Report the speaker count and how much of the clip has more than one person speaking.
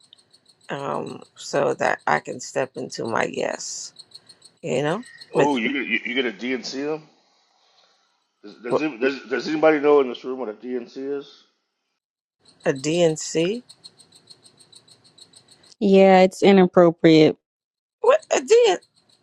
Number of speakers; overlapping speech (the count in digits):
3, about 2%